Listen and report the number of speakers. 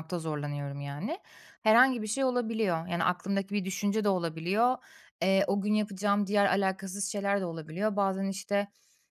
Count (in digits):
1